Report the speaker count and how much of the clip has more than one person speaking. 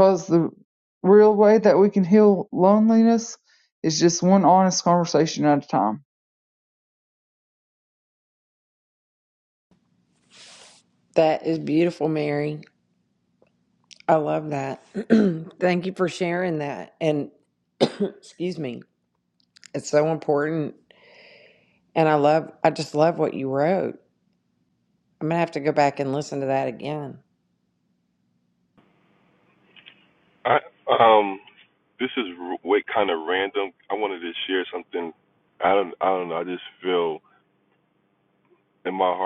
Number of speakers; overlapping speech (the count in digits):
3, no overlap